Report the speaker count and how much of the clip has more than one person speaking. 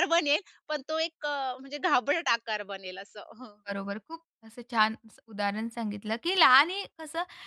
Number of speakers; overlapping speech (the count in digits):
2, no overlap